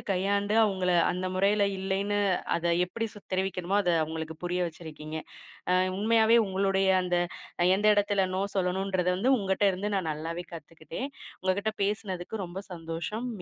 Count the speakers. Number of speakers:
one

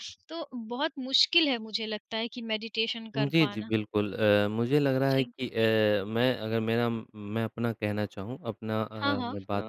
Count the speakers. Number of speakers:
two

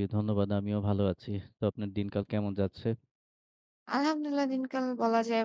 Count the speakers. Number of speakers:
two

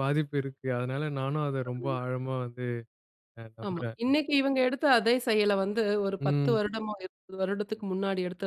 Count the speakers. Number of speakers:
two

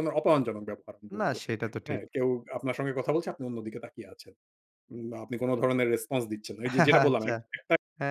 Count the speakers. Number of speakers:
two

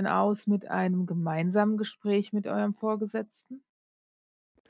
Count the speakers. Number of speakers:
one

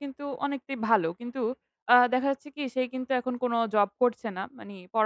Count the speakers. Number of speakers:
one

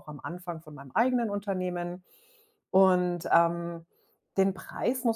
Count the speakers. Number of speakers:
one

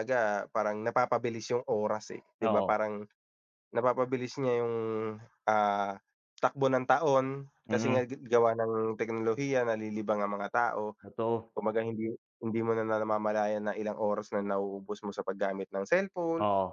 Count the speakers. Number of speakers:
two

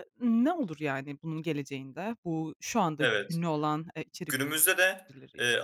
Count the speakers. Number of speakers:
two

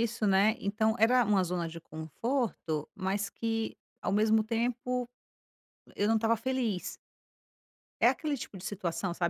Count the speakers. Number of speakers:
one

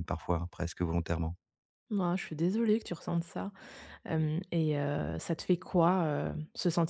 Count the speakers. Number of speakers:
two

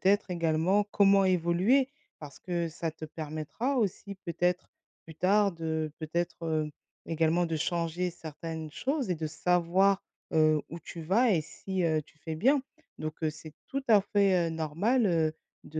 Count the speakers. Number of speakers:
one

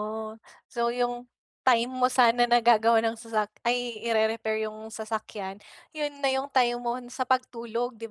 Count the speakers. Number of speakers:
one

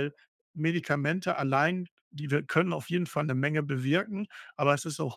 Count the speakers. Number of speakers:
one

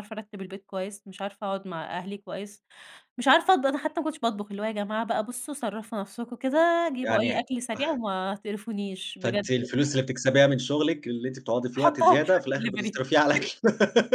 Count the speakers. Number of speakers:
two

